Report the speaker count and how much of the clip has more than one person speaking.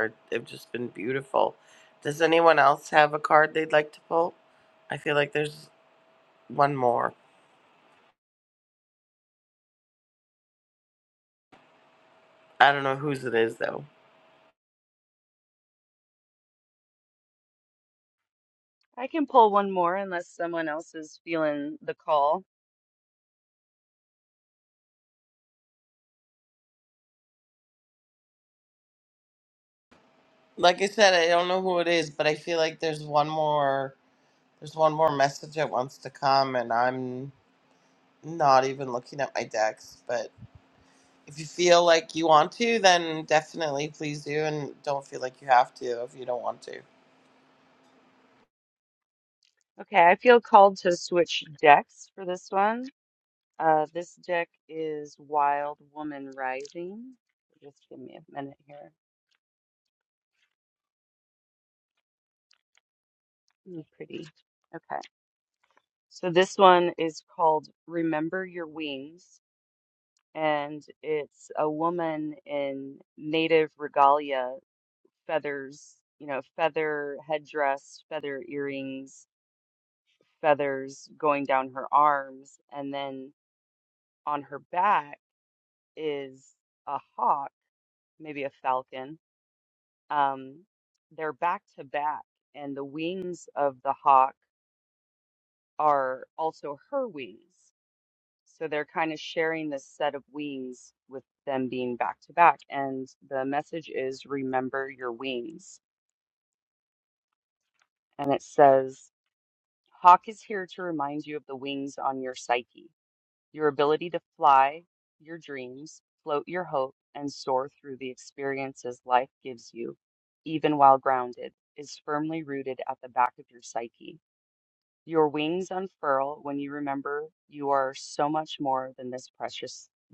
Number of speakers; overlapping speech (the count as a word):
two, no overlap